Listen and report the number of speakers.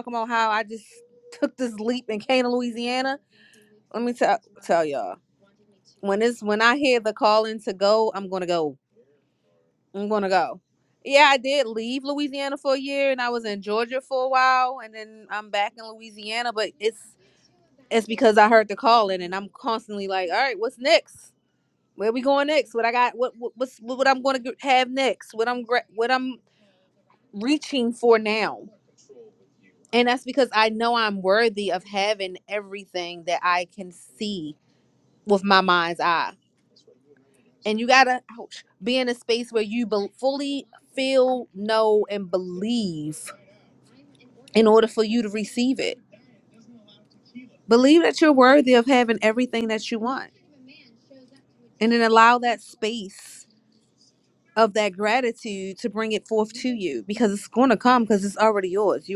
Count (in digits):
1